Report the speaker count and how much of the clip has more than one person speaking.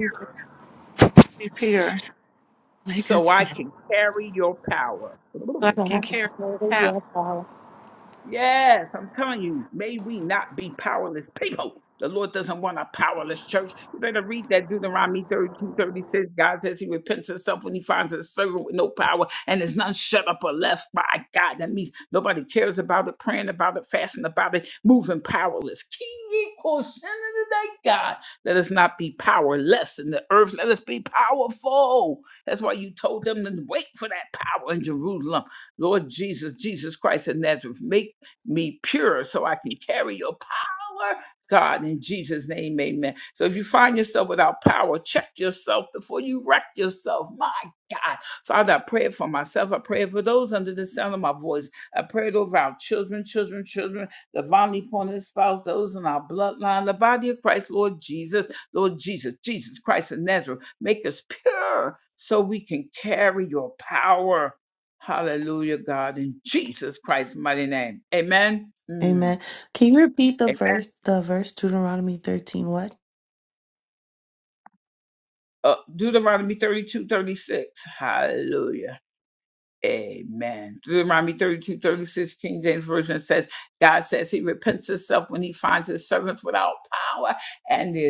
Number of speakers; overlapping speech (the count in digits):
4, about 2%